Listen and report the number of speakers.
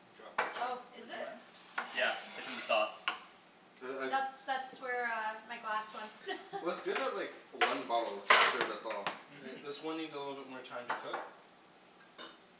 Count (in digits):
4